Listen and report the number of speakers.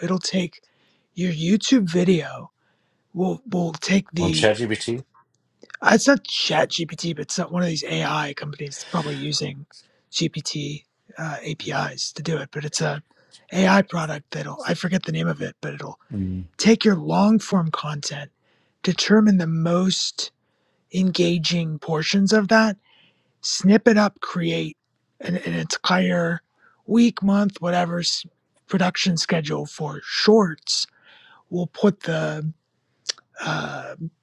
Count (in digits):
2